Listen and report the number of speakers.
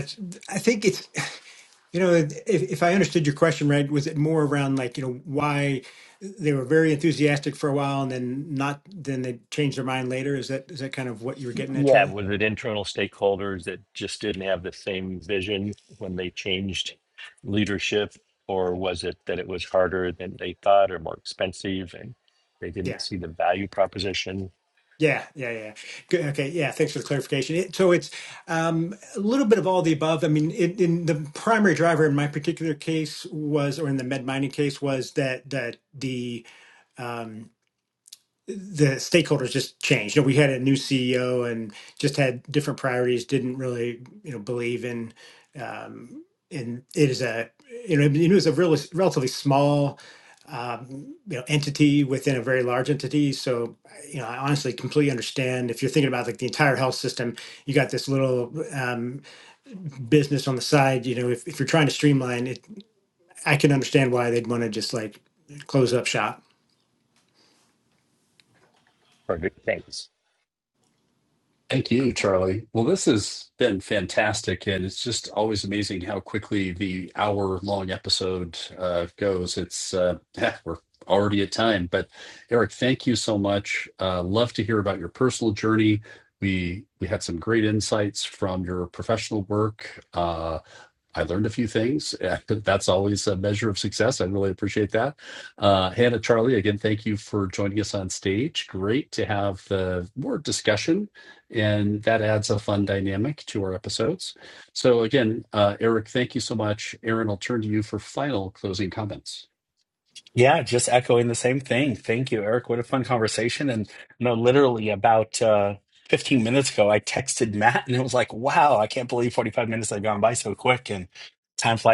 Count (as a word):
four